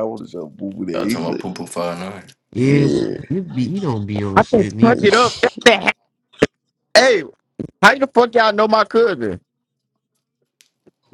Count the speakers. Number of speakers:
4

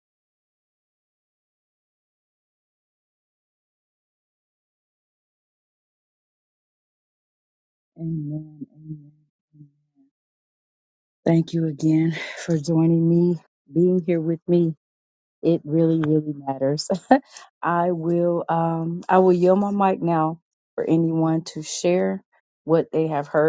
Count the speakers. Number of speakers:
1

